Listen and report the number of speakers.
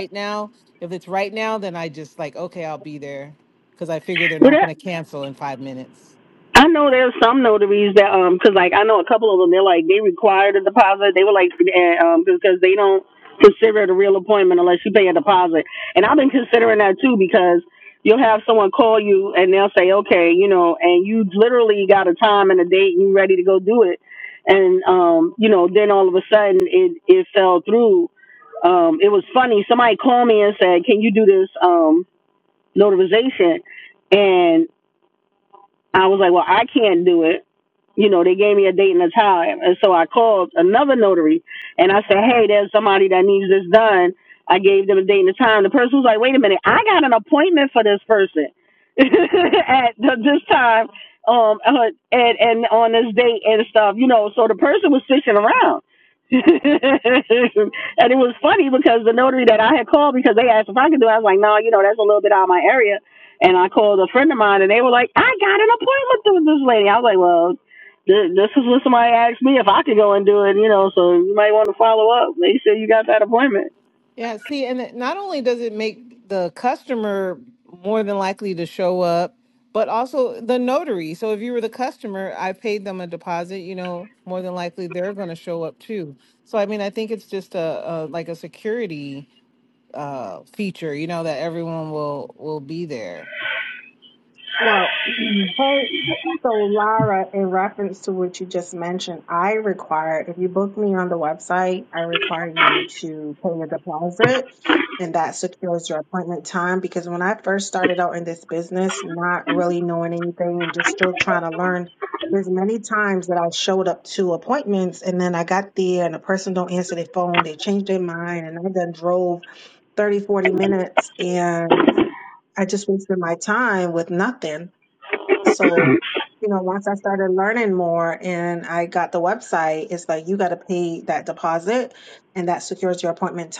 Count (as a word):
three